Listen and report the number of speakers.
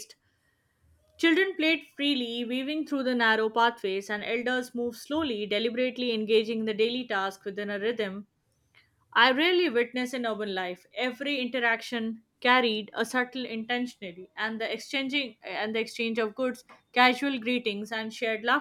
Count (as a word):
one